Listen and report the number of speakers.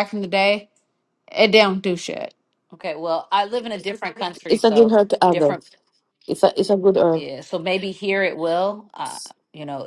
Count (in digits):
3